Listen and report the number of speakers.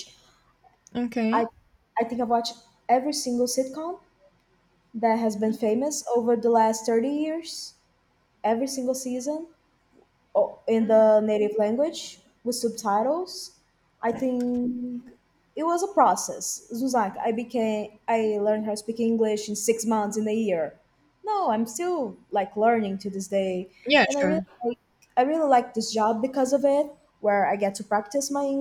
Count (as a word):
two